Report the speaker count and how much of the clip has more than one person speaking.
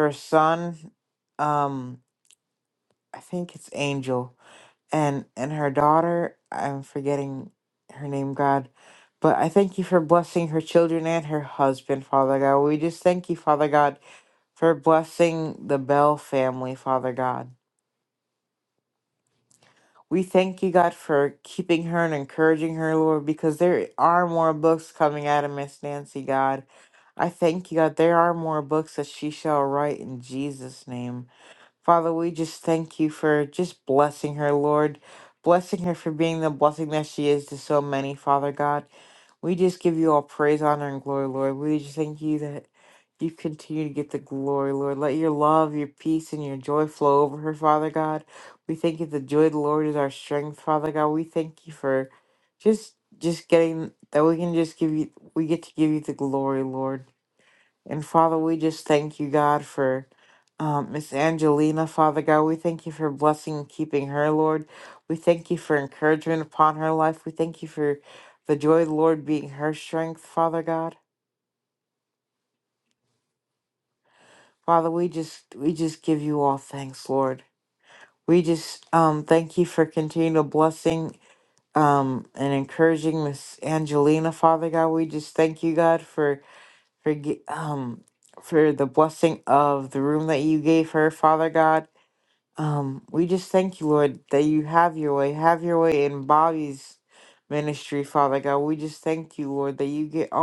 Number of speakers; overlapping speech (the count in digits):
1, no overlap